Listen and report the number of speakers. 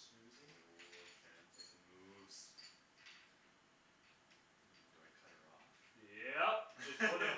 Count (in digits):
2